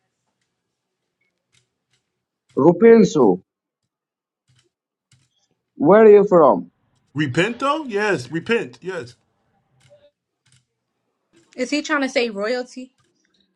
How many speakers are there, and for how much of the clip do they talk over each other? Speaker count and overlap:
three, no overlap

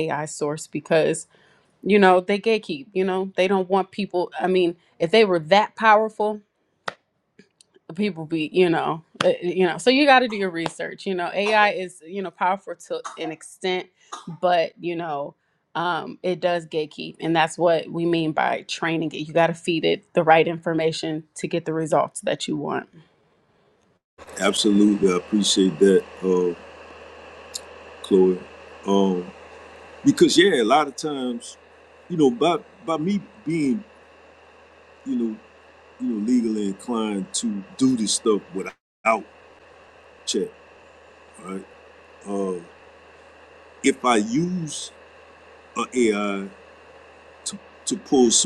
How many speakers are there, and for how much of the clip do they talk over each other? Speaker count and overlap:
two, no overlap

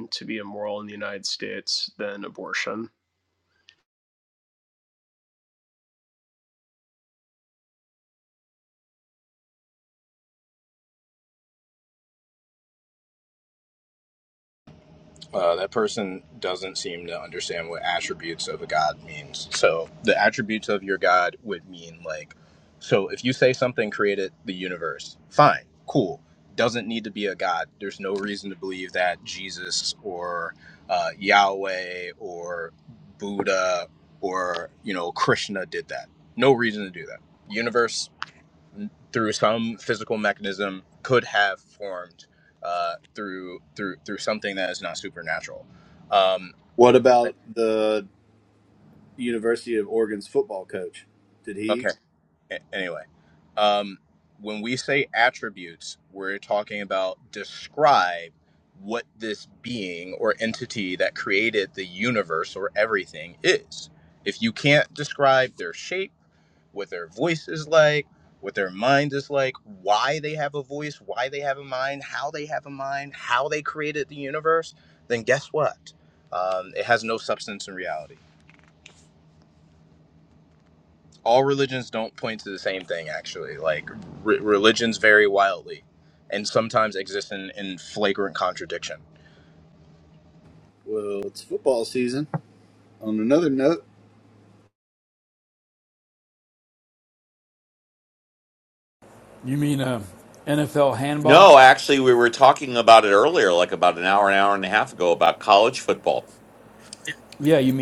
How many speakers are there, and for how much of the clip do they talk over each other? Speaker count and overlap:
five, under 1%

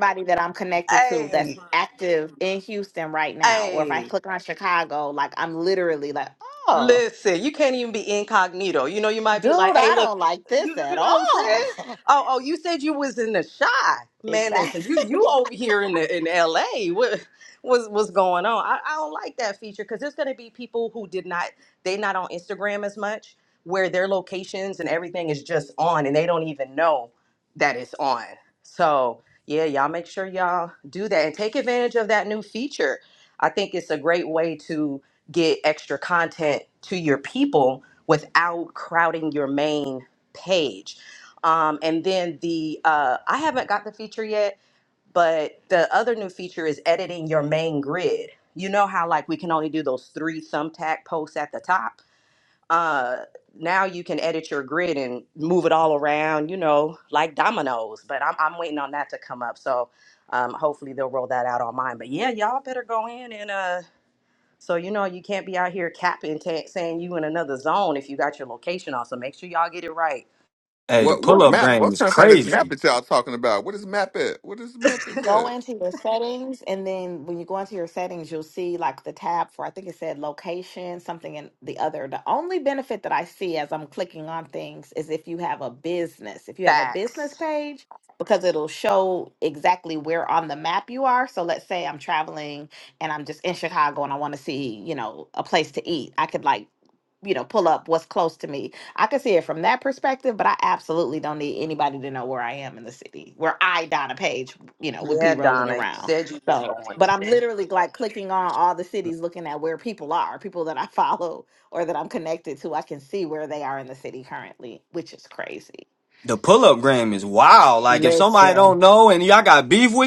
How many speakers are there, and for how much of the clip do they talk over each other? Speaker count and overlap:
four, about 7%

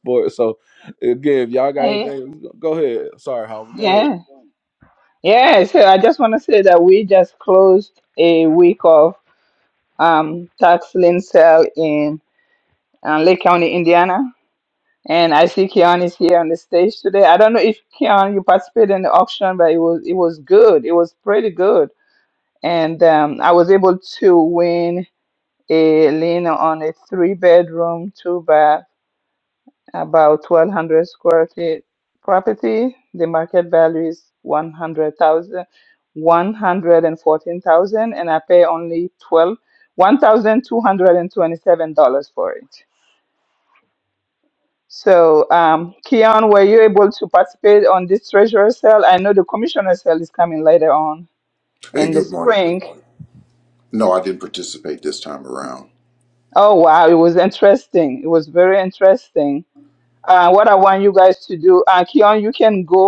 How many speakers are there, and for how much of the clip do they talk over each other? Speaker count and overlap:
three, about 2%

